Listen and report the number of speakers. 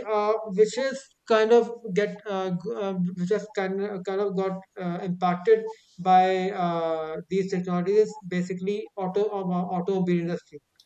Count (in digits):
1